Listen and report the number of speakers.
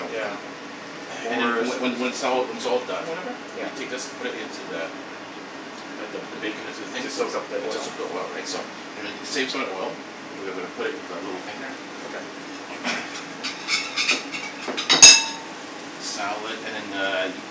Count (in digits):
2